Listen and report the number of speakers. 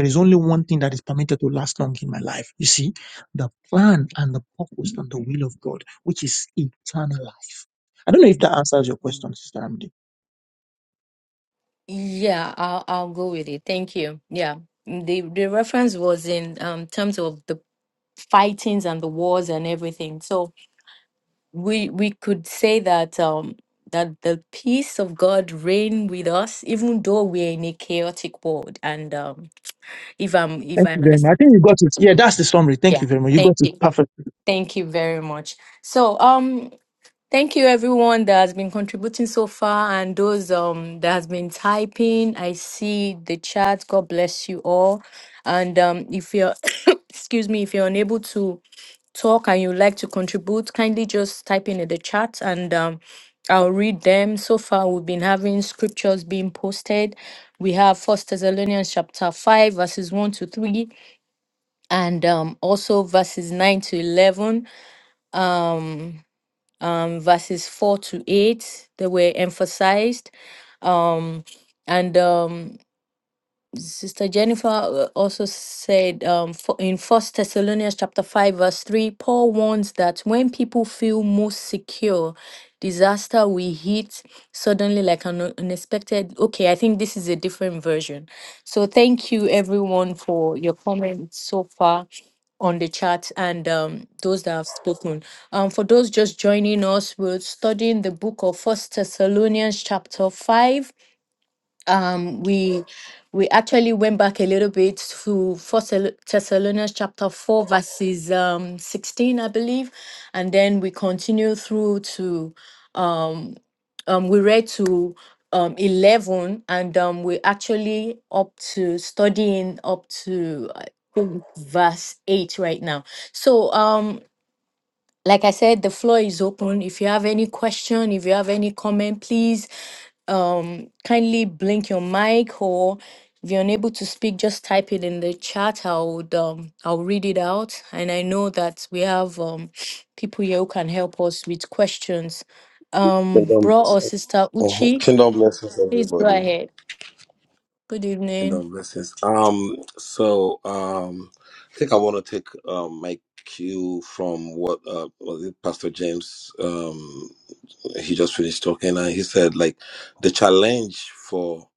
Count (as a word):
three